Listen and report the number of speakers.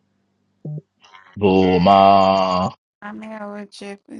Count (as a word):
two